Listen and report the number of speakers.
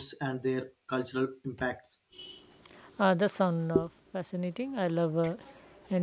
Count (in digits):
2